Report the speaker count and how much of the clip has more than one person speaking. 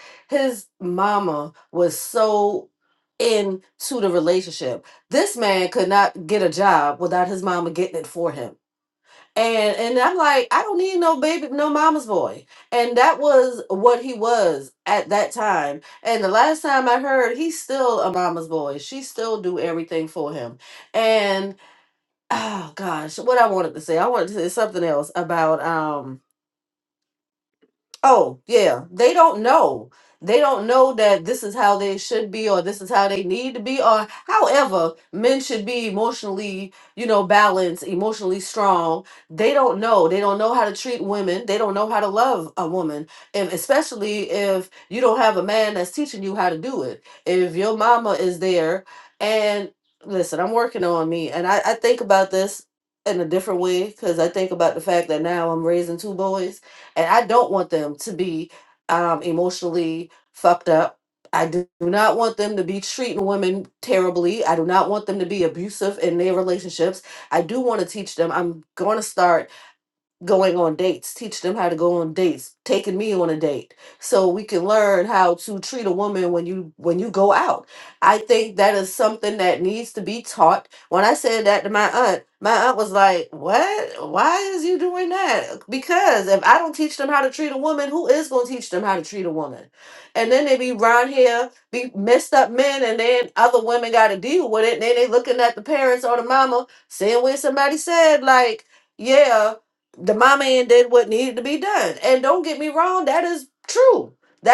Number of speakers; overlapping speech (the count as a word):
one, no overlap